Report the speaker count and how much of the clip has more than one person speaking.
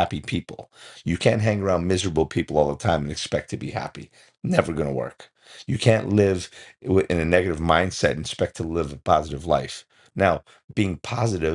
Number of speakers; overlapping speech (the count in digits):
1, no overlap